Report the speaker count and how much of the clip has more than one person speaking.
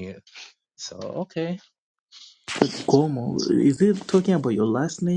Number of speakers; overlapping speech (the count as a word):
two, about 3%